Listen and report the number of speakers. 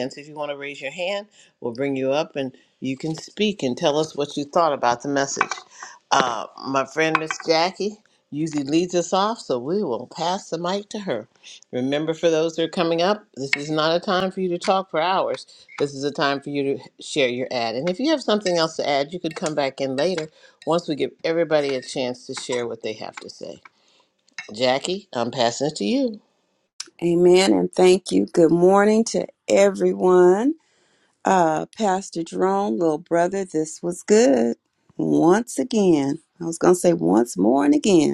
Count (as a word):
two